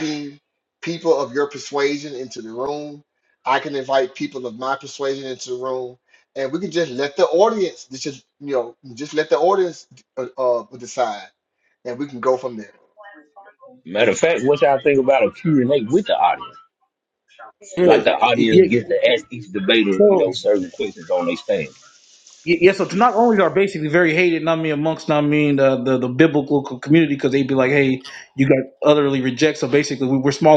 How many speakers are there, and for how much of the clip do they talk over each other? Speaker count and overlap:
three, about 4%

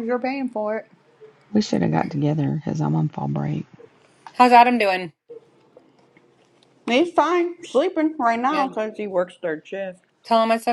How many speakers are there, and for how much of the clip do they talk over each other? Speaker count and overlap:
three, about 2%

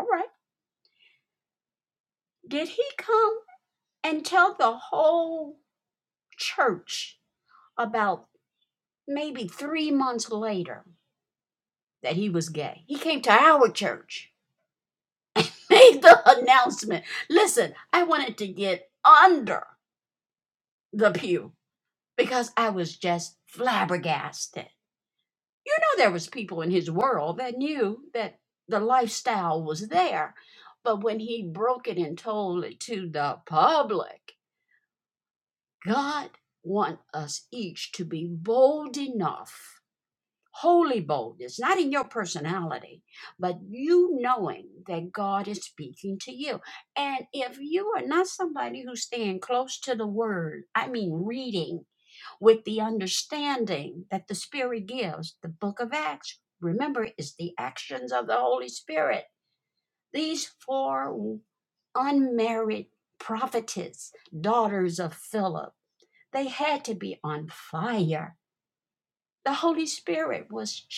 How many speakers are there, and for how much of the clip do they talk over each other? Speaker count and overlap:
one, no overlap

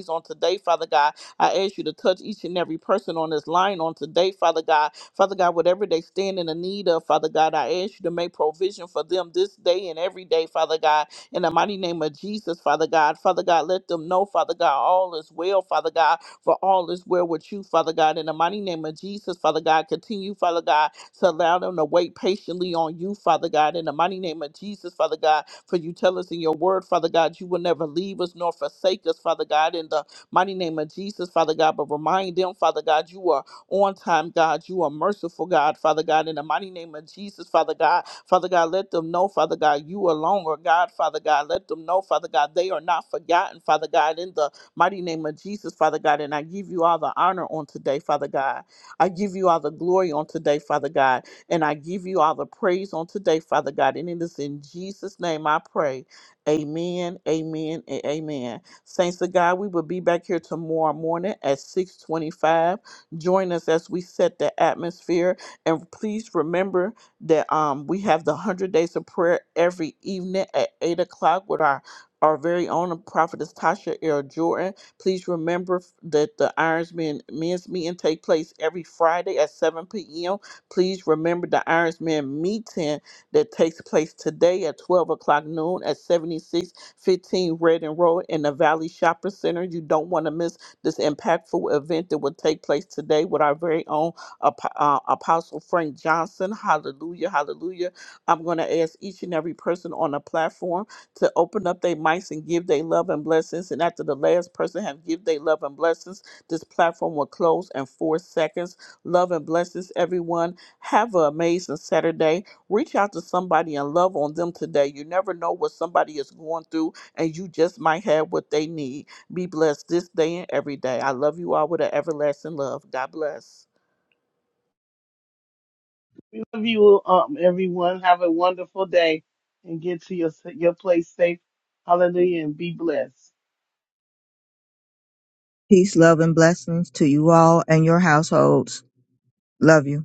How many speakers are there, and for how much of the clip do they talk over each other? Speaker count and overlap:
three, no overlap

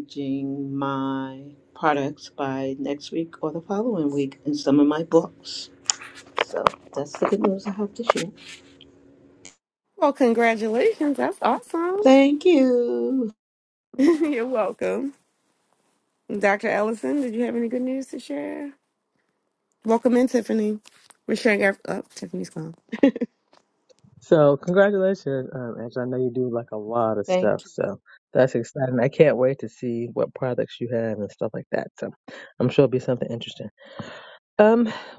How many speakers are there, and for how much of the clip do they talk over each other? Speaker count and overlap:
three, about 1%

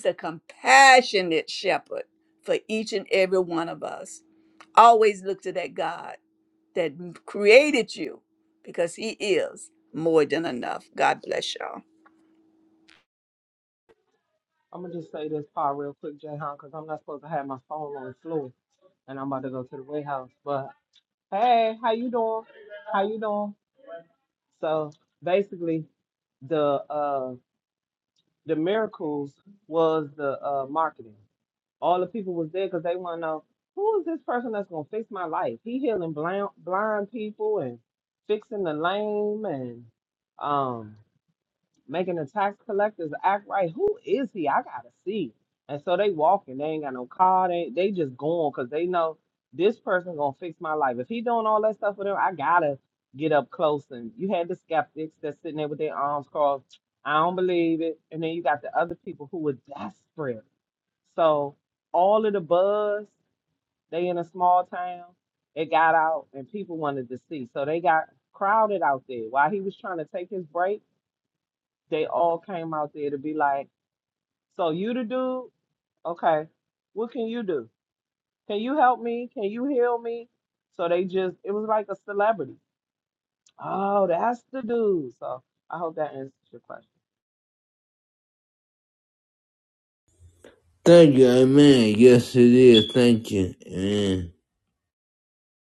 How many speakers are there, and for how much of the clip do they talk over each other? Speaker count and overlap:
three, no overlap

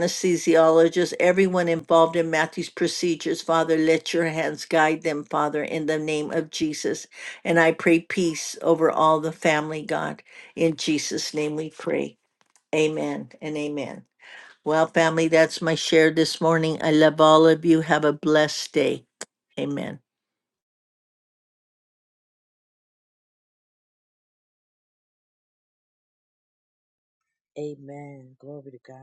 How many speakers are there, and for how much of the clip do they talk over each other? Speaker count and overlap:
two, no overlap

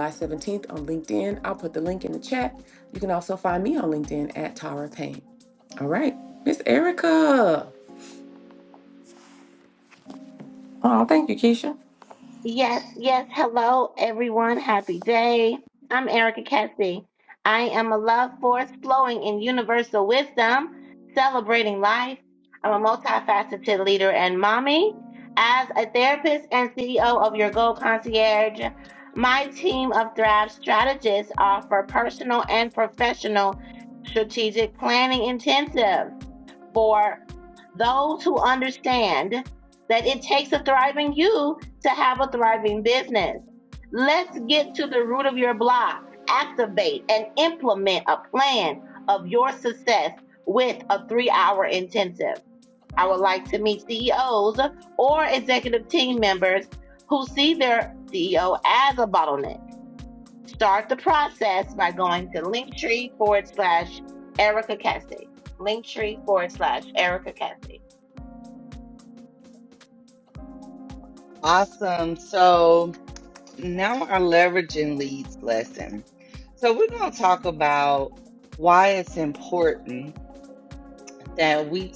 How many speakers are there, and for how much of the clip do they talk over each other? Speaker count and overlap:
three, no overlap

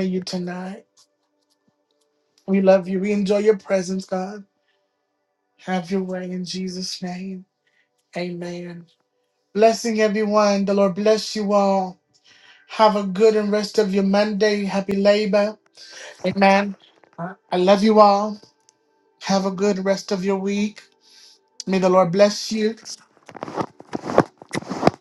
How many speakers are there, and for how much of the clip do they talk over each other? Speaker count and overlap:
one, no overlap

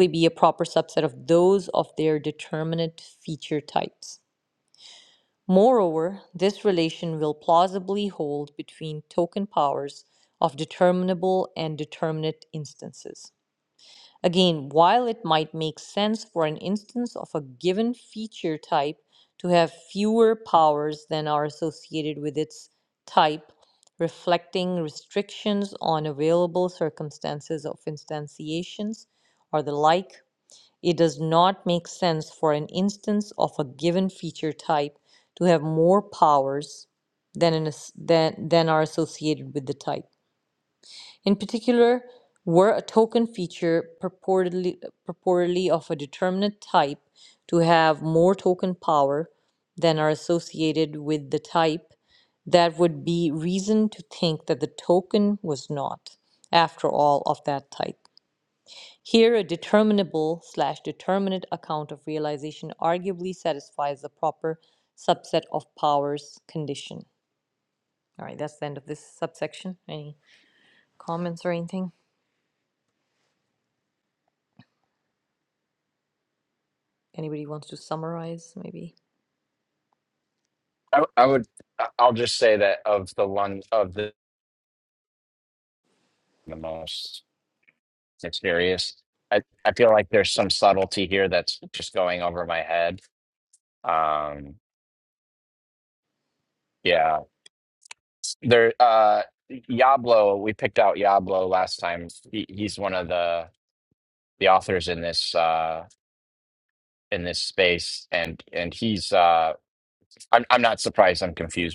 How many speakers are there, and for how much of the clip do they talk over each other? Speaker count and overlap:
two, no overlap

